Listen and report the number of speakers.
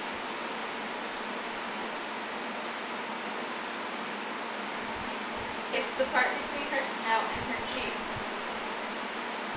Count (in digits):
1